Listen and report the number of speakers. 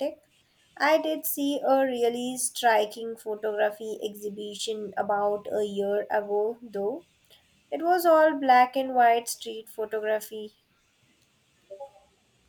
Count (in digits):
1